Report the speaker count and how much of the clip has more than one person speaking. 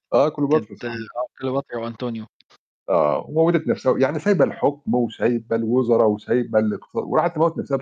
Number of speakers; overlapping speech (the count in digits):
2, about 7%